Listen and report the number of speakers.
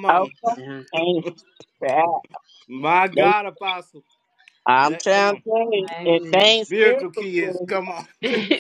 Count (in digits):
3